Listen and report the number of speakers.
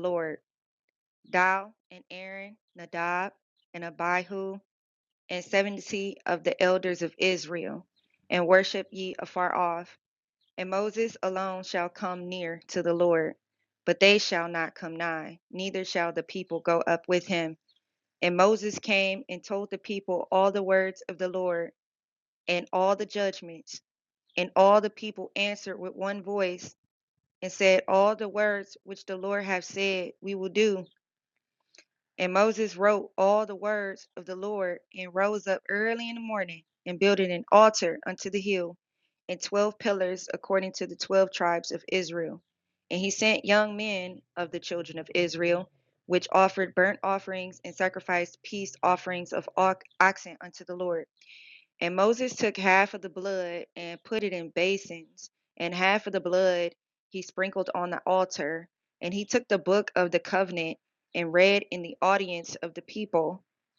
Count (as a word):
one